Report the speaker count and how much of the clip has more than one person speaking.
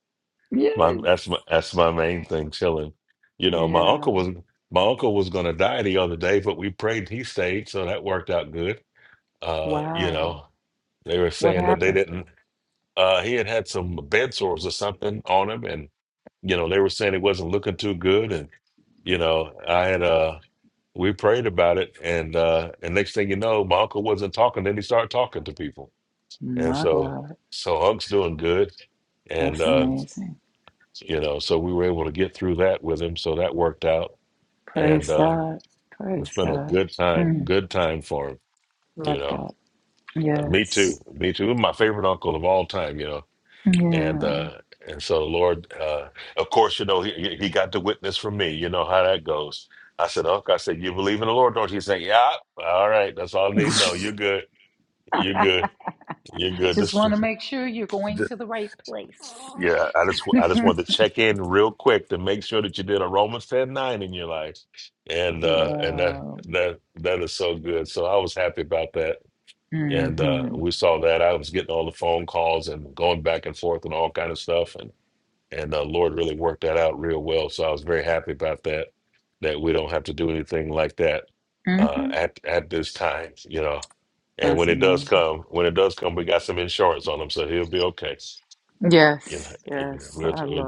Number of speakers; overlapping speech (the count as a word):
two, about 12%